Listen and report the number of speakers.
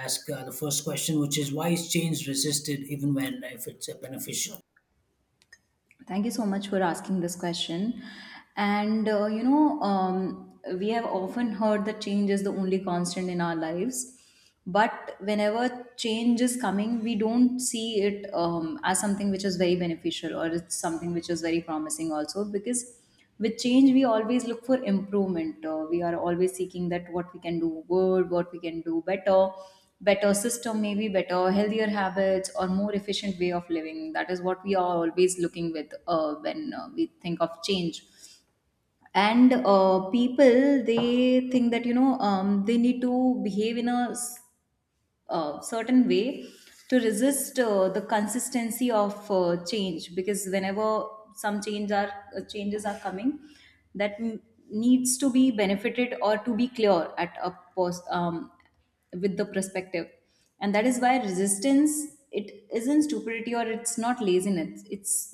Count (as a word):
two